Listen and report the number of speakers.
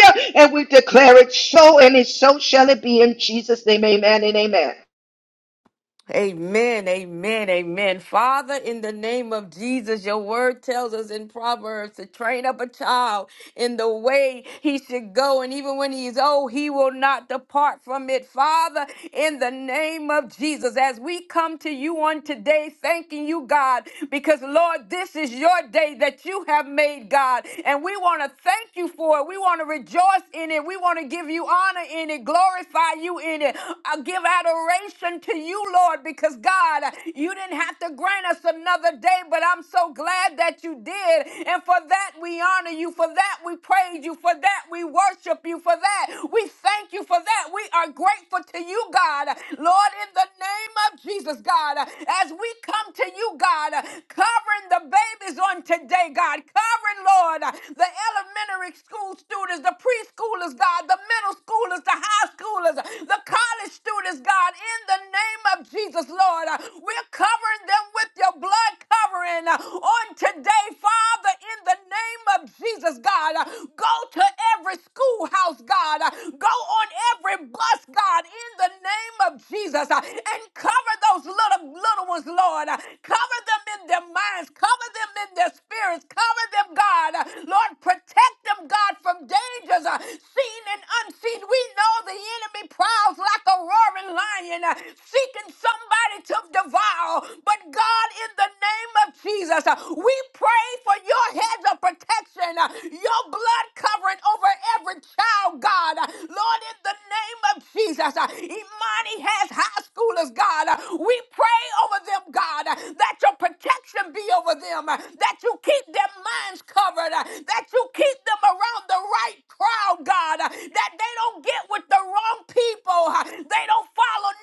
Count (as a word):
two